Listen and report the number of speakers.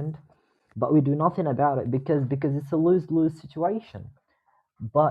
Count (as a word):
one